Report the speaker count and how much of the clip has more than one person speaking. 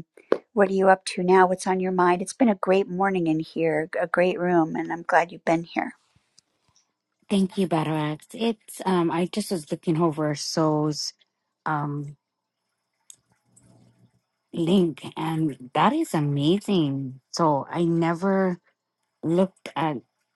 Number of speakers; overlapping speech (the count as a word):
two, no overlap